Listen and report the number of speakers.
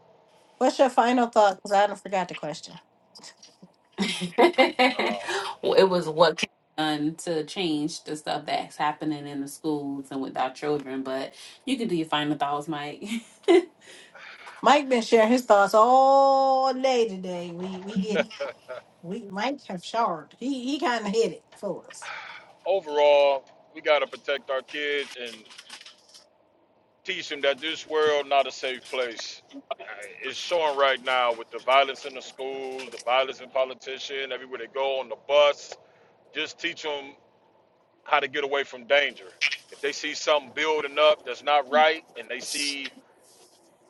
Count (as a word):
three